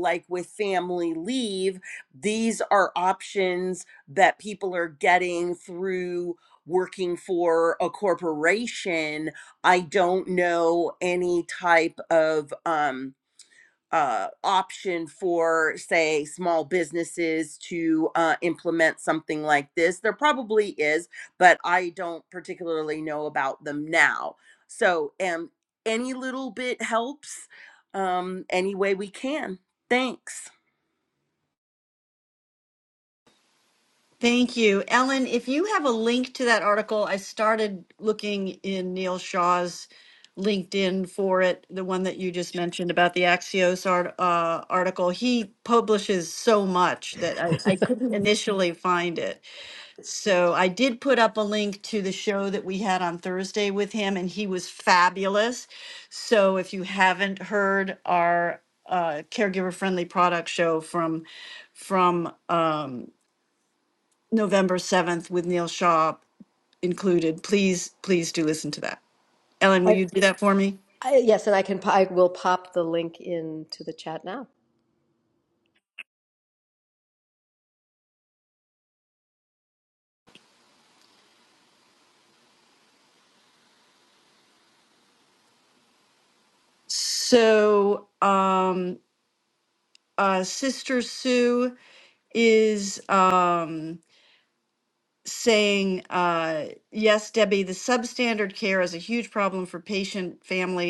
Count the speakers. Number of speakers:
three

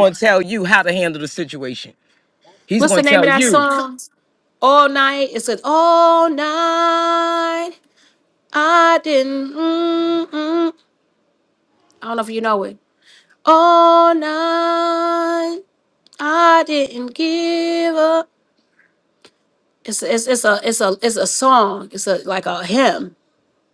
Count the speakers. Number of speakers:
two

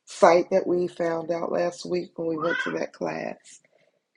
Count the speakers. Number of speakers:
one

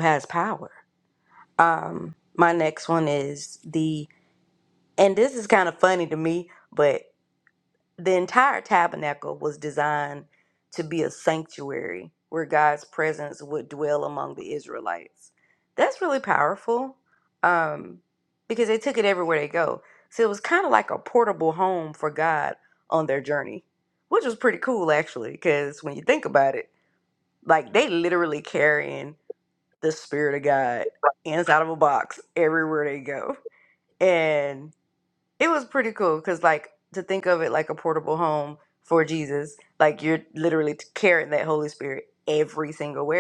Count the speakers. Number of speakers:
one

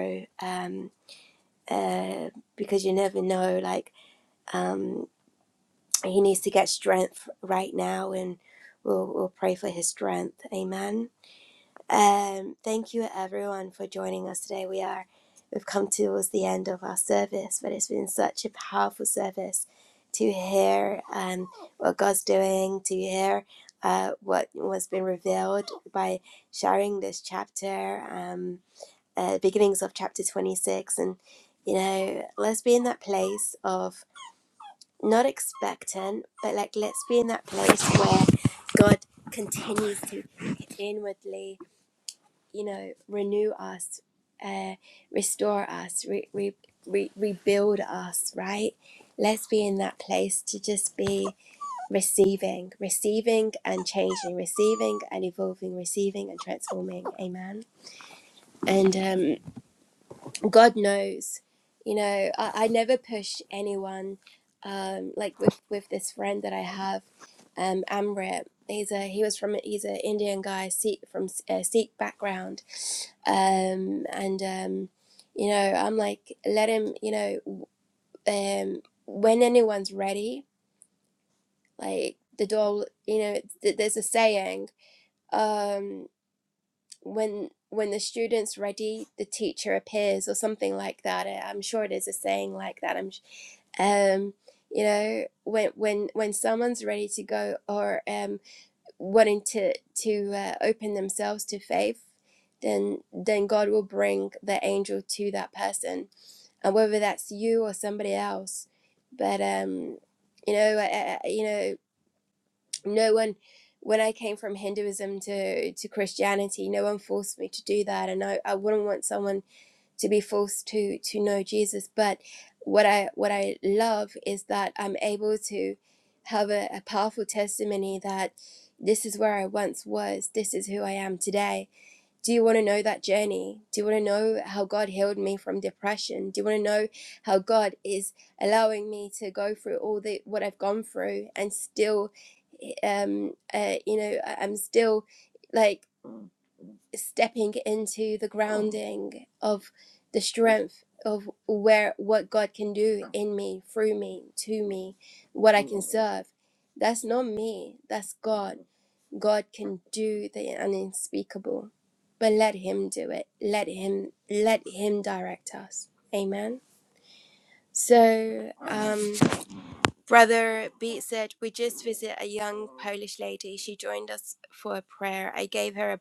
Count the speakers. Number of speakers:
one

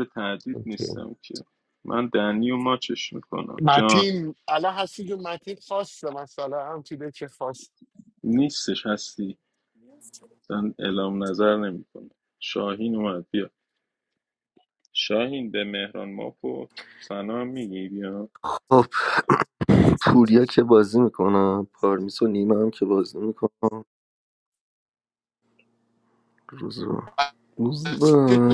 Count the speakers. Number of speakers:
three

